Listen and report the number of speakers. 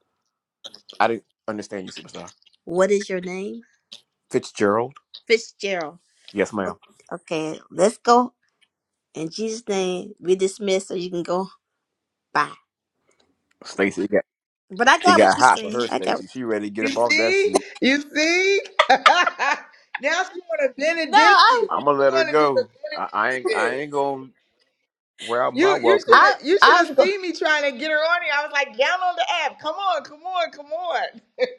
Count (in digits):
3